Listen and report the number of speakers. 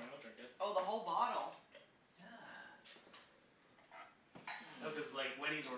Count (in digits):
3